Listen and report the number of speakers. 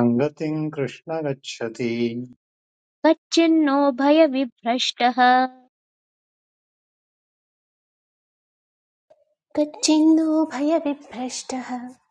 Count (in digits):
3